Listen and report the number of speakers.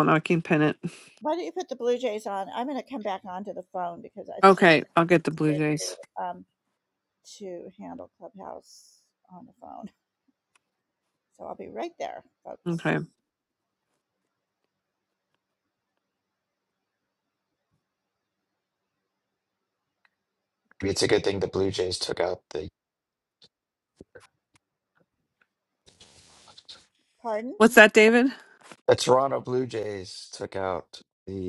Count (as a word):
three